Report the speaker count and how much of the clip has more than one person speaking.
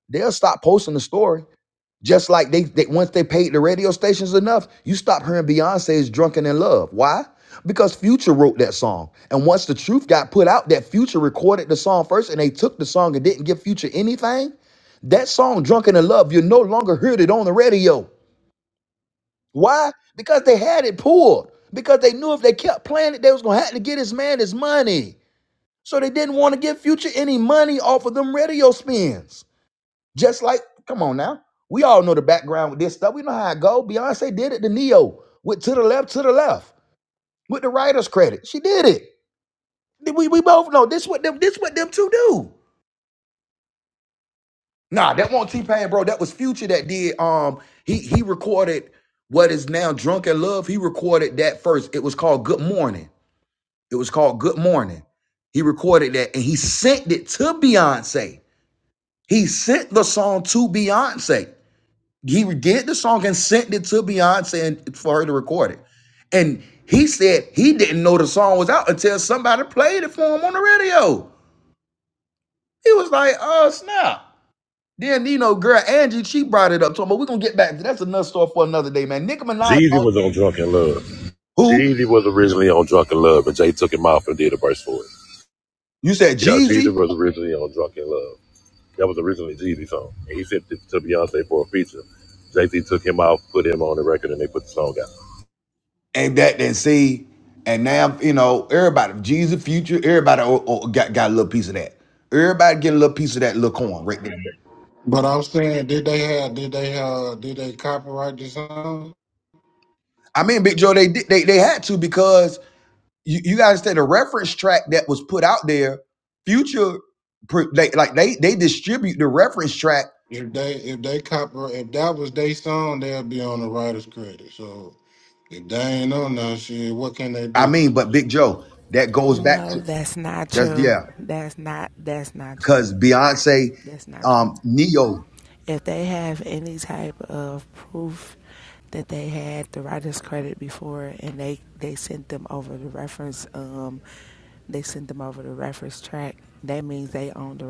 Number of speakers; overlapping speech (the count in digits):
4, about 2%